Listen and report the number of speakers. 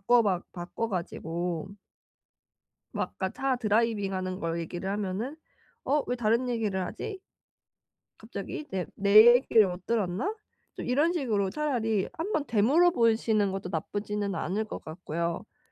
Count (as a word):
one